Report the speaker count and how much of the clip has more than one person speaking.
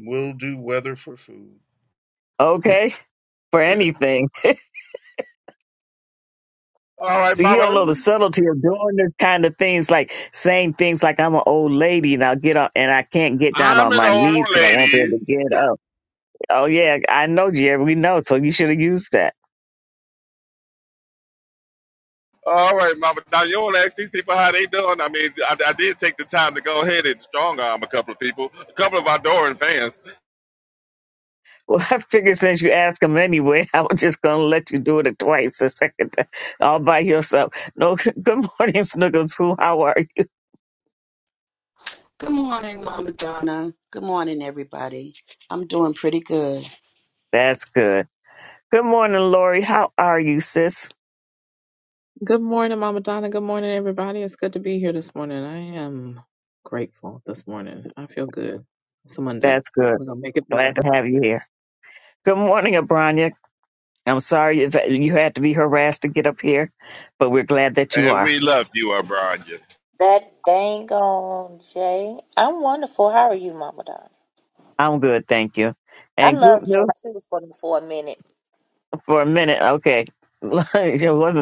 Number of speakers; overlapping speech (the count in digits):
6, about 4%